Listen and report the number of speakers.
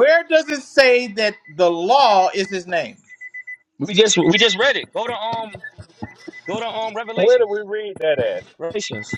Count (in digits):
3